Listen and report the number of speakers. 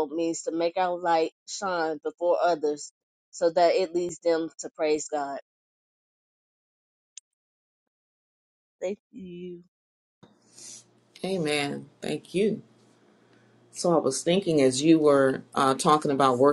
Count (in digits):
2